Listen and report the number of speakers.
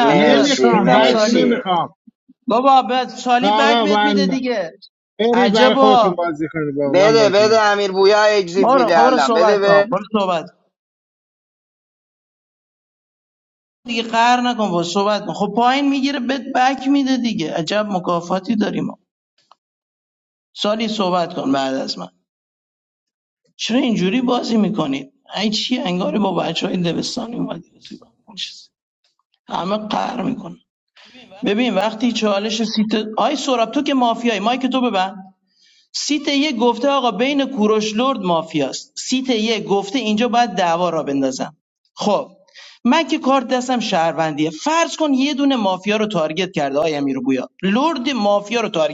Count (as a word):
three